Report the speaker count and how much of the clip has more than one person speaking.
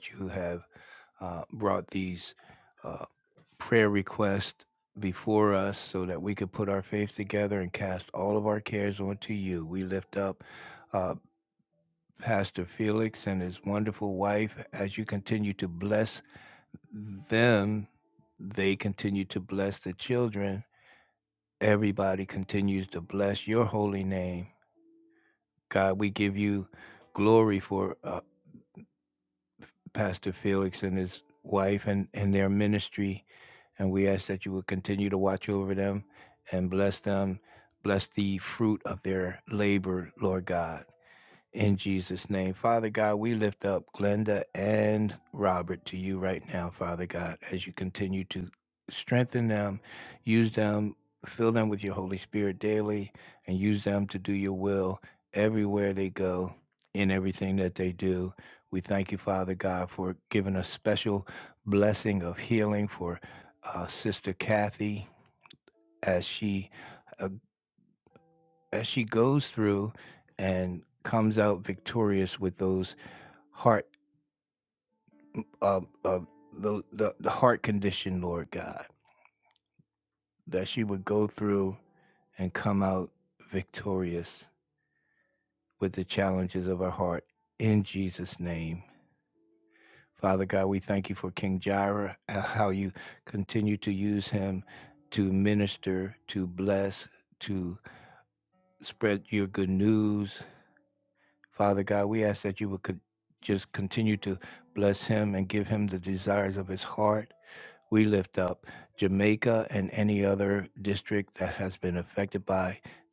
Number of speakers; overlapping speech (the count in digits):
1, no overlap